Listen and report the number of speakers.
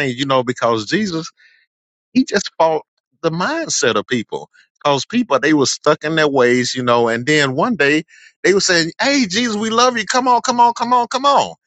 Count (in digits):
1